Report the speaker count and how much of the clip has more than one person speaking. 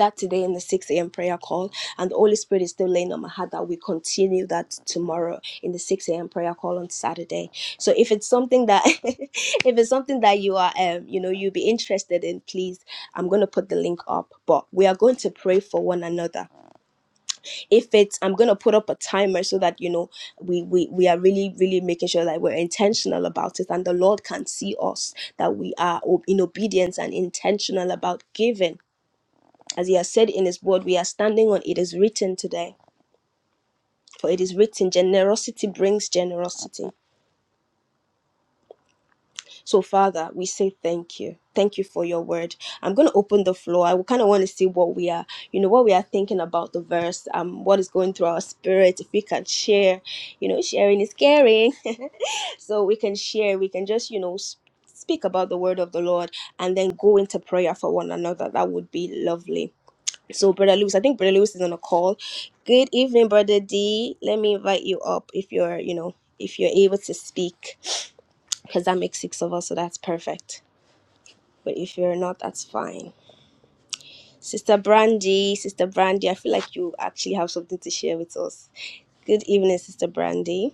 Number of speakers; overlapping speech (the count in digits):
1, no overlap